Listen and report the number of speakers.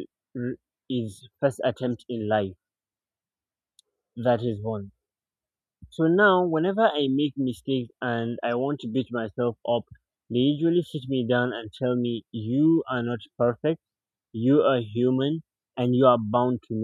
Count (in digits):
1